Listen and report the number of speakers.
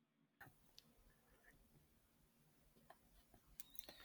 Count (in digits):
0